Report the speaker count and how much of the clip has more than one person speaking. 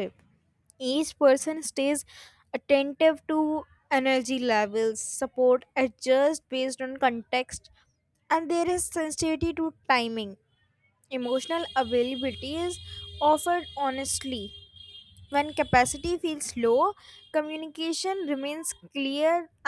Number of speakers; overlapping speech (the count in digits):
1, no overlap